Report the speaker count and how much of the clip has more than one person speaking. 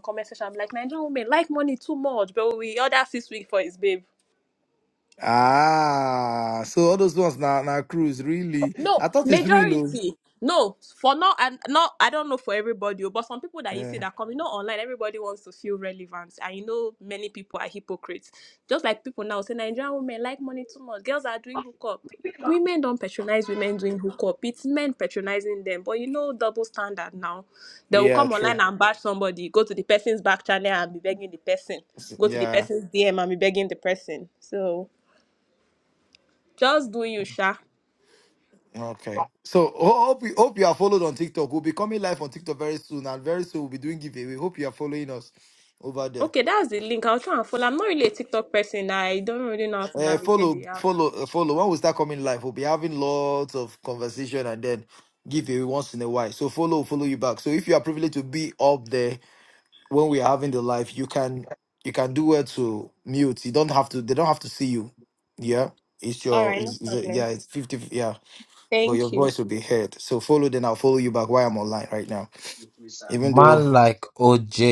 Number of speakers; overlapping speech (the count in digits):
3, about 7%